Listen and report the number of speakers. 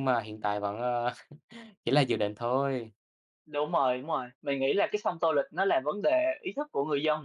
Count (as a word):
two